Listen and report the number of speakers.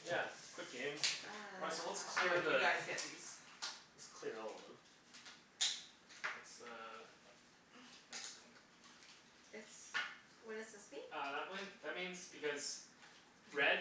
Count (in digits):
4